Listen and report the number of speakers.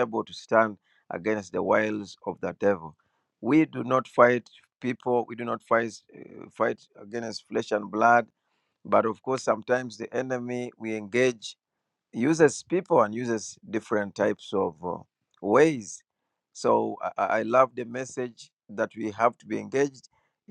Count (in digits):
1